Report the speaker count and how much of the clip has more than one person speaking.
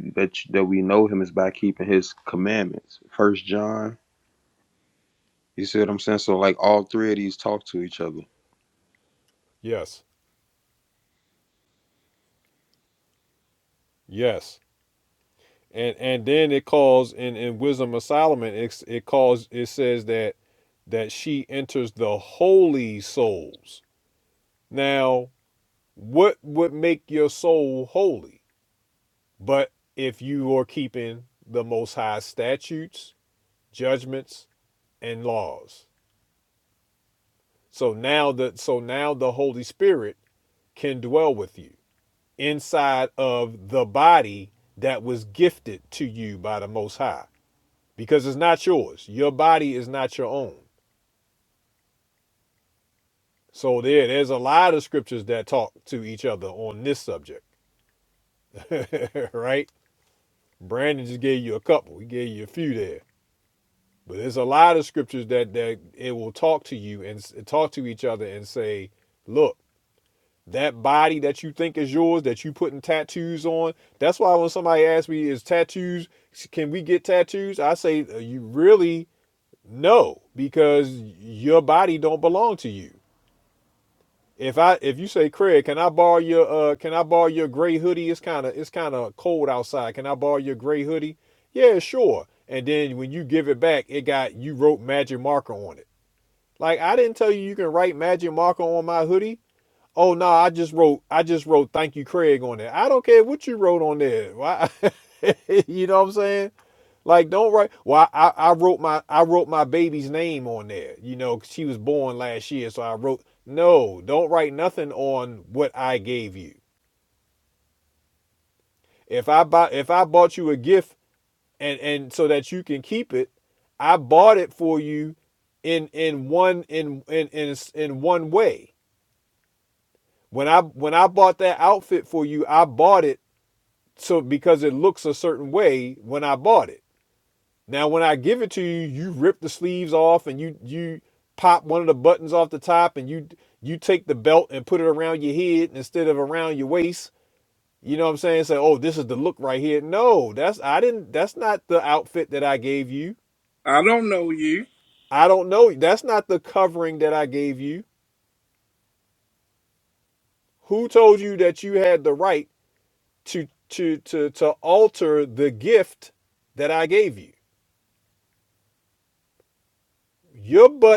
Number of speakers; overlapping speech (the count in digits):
3, no overlap